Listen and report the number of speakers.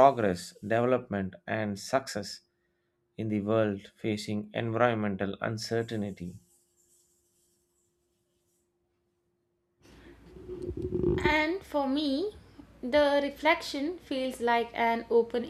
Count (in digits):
2